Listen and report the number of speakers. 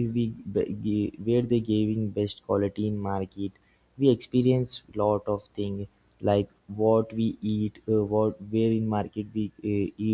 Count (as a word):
one